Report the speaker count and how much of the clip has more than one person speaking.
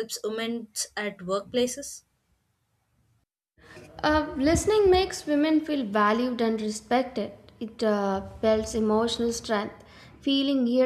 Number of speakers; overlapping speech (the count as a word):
two, no overlap